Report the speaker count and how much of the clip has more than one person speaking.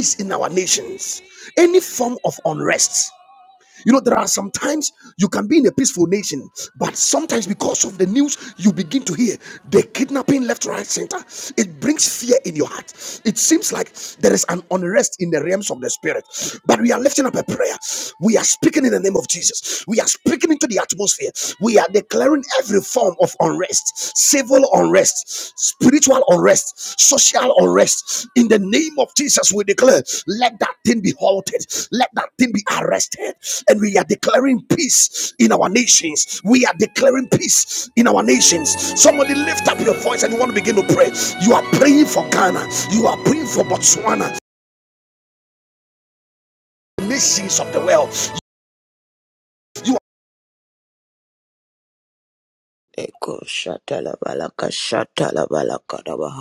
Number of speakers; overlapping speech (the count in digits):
2, no overlap